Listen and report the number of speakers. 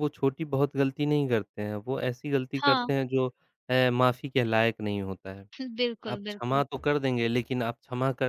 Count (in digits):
2